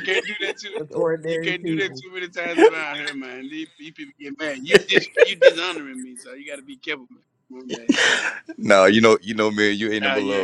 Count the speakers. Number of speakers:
three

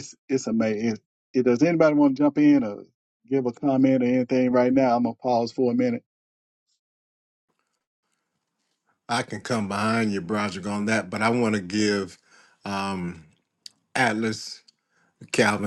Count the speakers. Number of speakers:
two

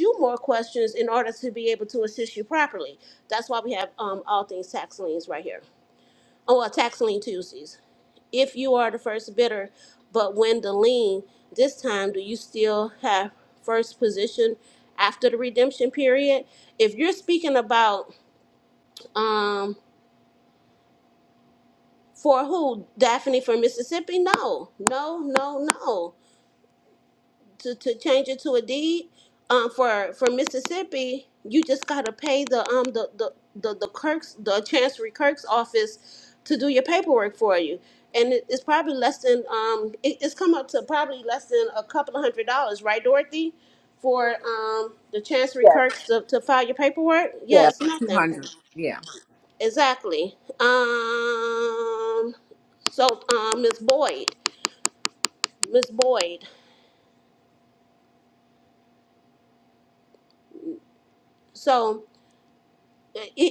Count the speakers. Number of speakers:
two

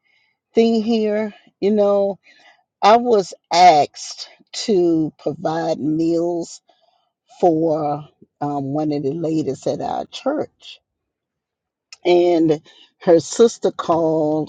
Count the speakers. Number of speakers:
one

